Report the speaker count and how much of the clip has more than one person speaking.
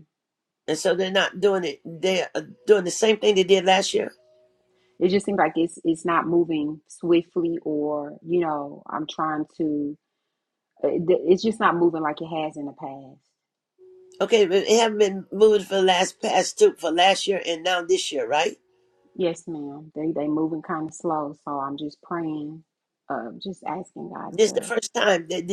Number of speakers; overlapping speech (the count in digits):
2, about 1%